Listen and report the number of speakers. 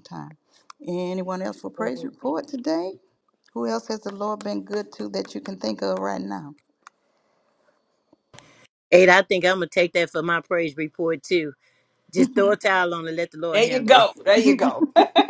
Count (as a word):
three